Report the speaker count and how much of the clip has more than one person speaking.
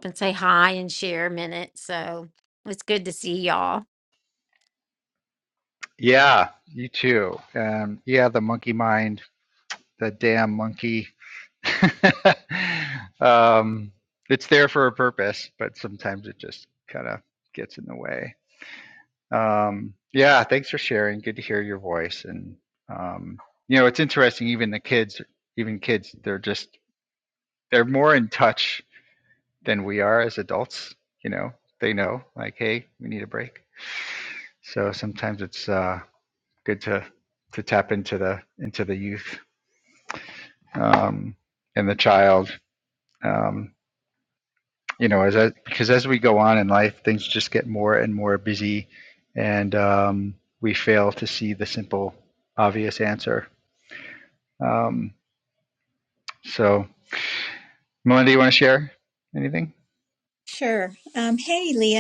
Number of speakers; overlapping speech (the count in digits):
3, no overlap